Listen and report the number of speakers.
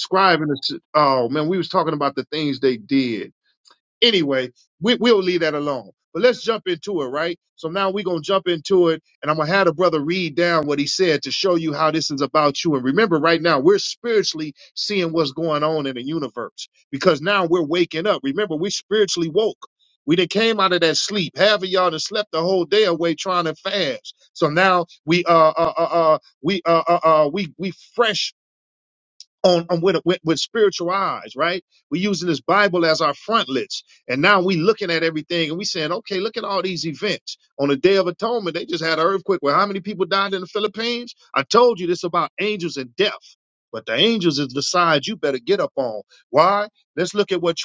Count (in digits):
1